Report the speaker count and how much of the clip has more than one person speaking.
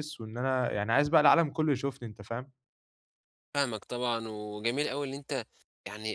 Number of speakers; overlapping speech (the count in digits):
2, no overlap